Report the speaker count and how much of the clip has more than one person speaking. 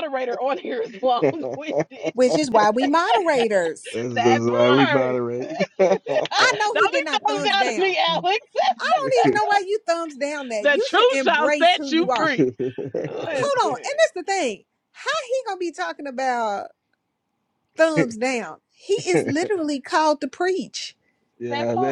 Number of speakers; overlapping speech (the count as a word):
three, about 25%